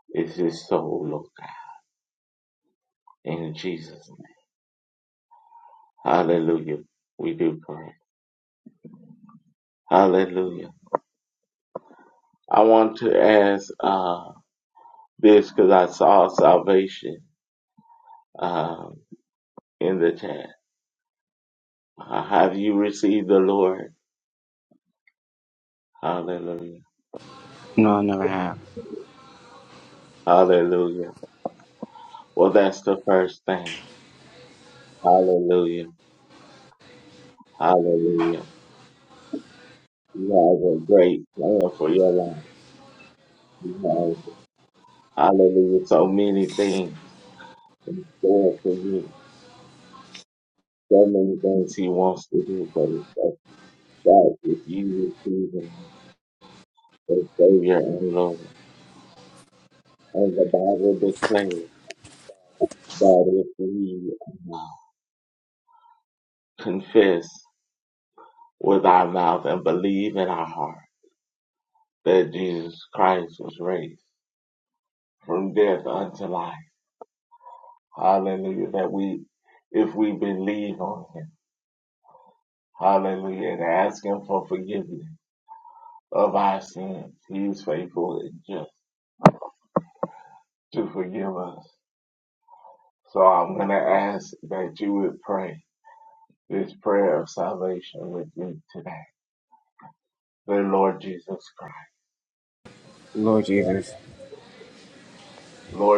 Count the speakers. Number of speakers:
2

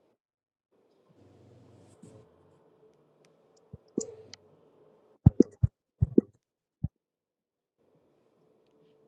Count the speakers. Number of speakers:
0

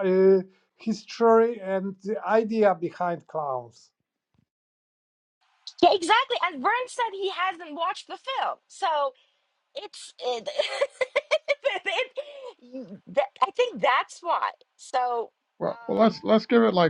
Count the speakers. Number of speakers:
3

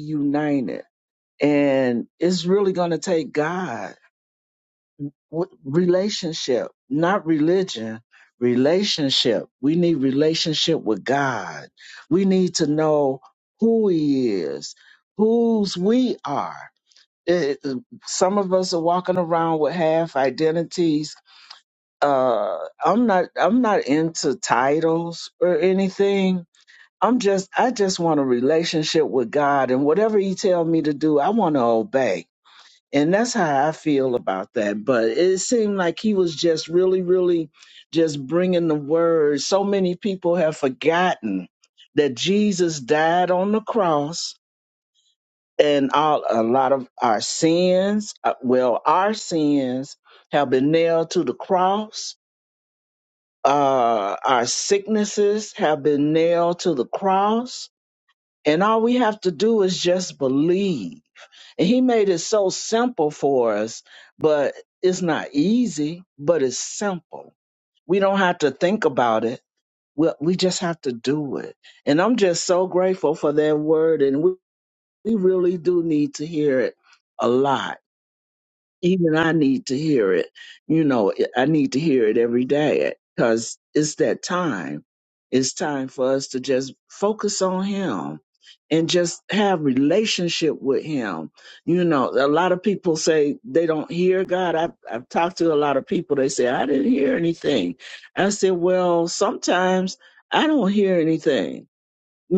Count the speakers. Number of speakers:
1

